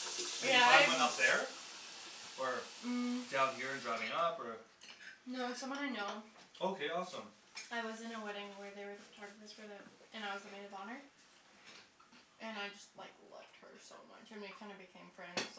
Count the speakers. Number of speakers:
2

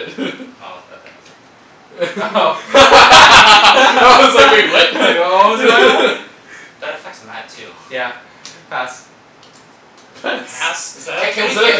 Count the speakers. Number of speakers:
4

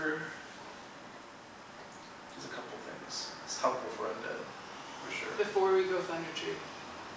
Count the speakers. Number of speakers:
2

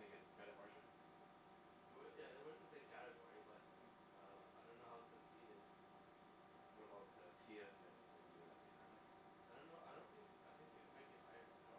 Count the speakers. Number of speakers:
2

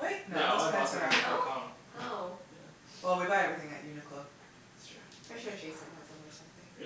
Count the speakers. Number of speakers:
3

